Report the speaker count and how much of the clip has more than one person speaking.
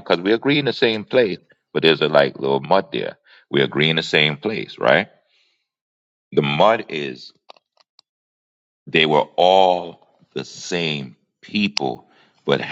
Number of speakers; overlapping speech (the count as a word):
one, no overlap